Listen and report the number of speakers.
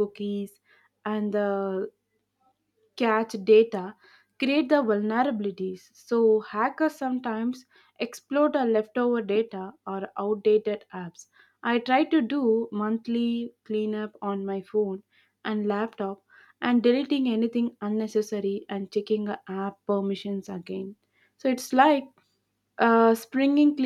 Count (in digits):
1